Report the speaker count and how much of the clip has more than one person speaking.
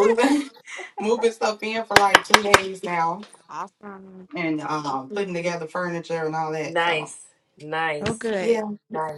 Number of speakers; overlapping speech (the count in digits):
3, about 9%